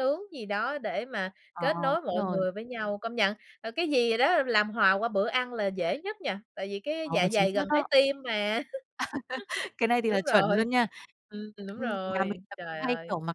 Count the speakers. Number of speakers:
two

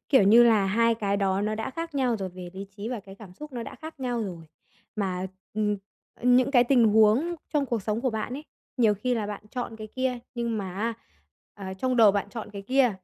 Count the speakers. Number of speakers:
one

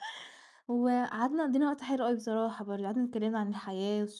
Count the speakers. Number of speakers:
one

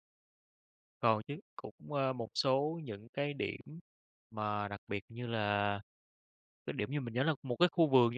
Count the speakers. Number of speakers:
one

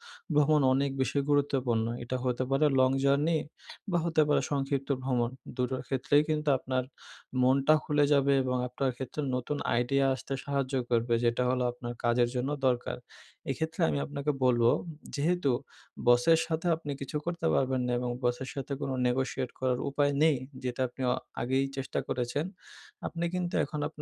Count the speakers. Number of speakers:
one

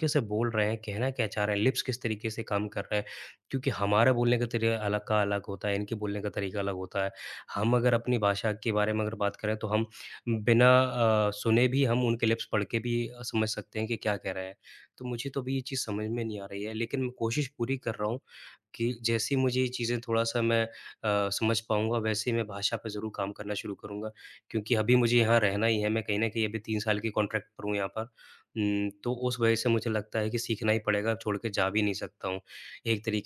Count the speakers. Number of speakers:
one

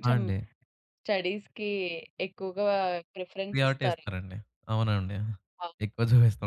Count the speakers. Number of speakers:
two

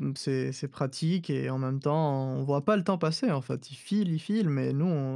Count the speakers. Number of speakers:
one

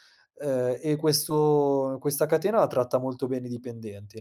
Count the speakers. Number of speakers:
one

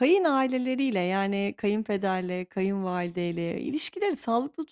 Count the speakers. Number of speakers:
one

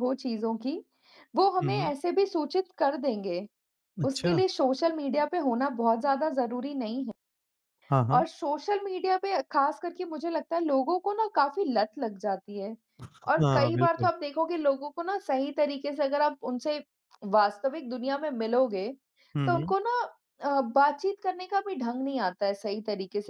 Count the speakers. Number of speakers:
two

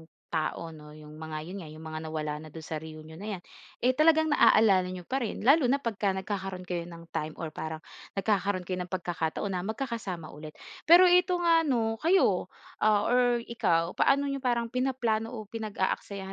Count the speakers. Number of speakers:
one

